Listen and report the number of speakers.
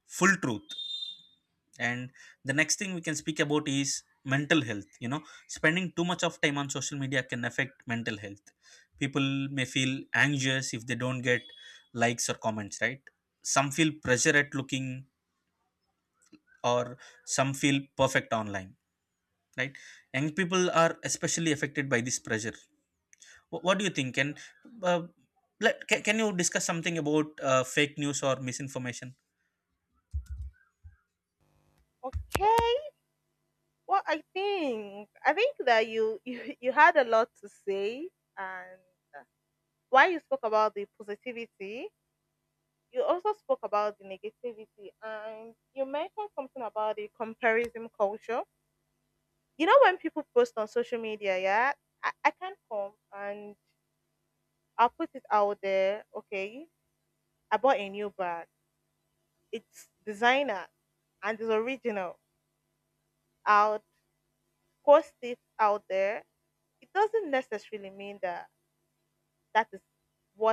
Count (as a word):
two